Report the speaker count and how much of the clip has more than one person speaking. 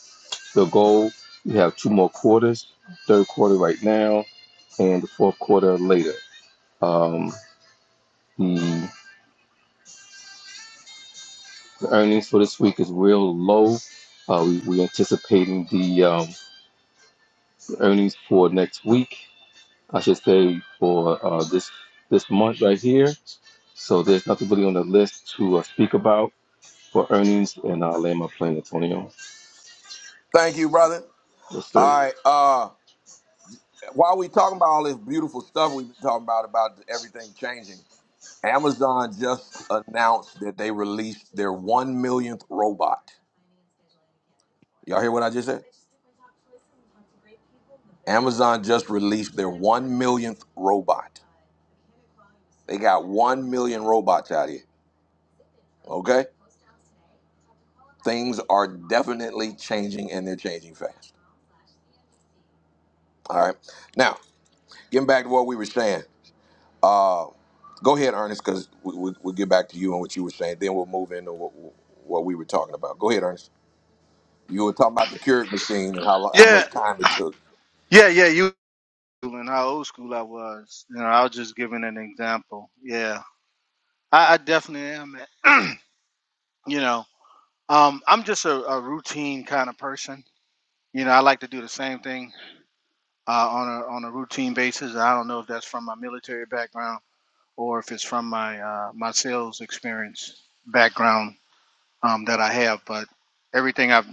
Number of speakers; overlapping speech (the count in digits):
3, about 1%